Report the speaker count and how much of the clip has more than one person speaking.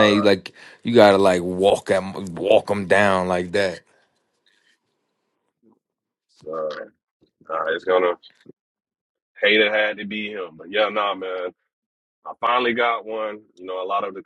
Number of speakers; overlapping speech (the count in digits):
2, about 2%